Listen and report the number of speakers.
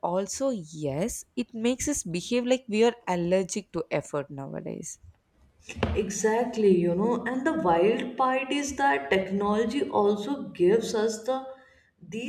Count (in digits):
2